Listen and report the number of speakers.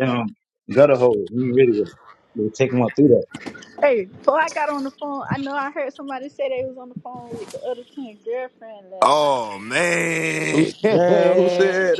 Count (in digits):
4